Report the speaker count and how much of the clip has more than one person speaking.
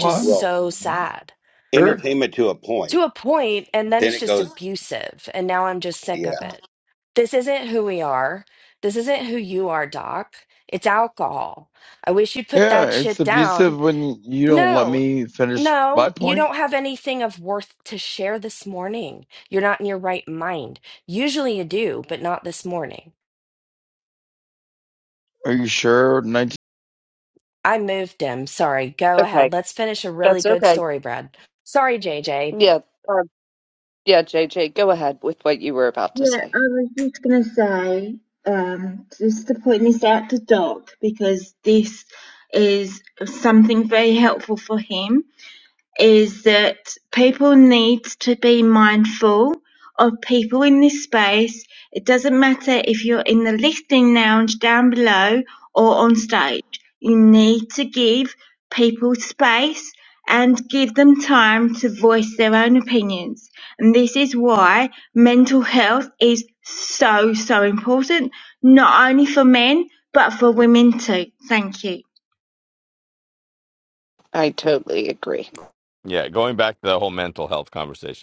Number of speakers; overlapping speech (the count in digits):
6, about 7%